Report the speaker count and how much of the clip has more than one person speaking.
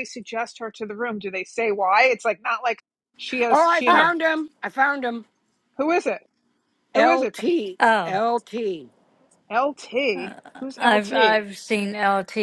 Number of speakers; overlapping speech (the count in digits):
3, about 18%